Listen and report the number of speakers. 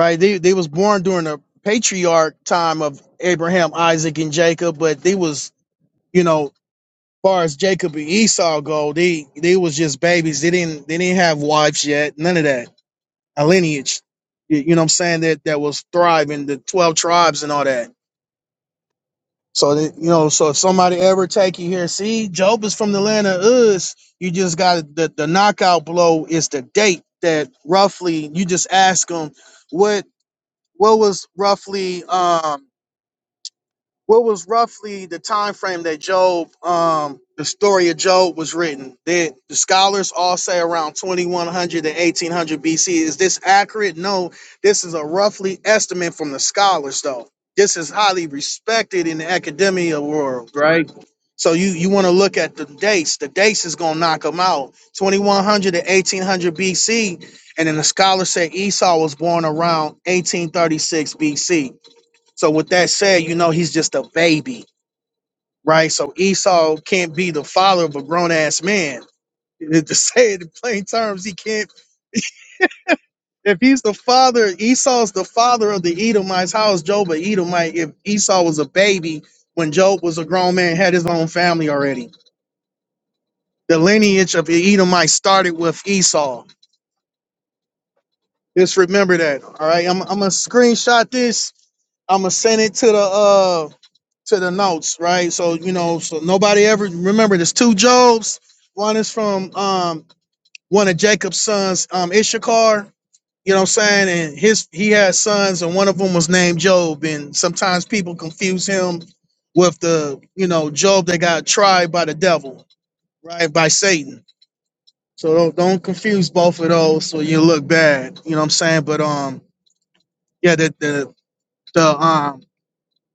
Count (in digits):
1